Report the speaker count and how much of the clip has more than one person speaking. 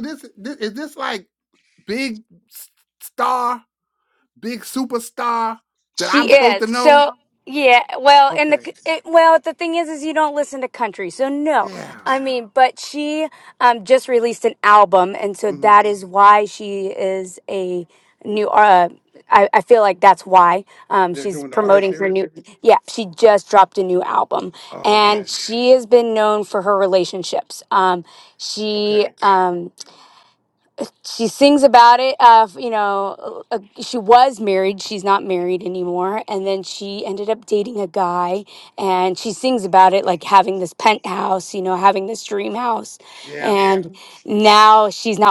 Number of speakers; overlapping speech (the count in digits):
2, about 9%